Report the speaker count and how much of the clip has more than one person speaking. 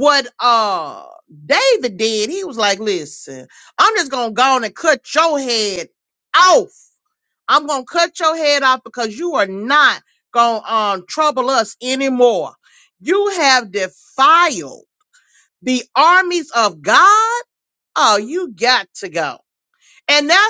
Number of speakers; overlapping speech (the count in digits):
1, no overlap